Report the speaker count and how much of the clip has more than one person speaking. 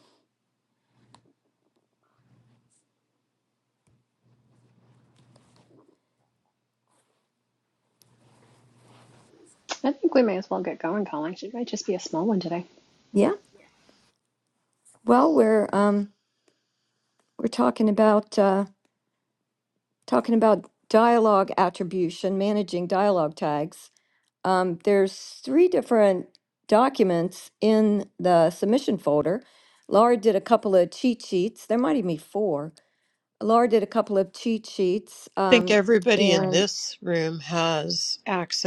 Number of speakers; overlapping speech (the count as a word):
three, about 2%